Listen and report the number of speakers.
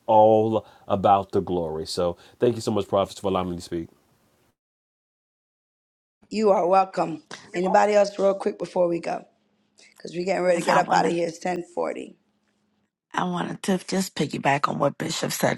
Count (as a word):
three